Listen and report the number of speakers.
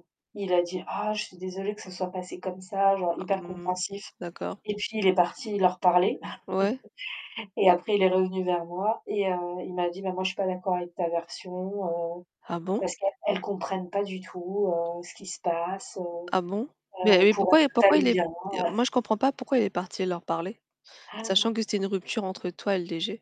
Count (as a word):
two